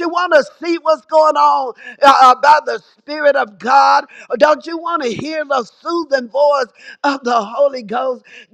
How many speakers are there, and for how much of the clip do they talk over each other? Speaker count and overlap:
one, no overlap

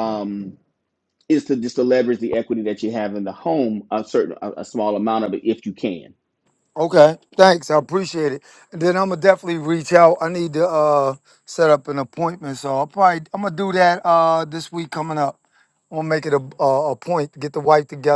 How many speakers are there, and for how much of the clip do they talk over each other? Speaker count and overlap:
two, no overlap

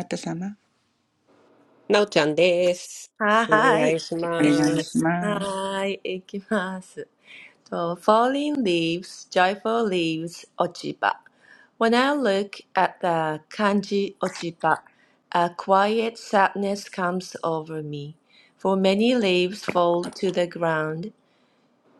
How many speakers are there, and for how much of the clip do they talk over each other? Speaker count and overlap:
three, about 6%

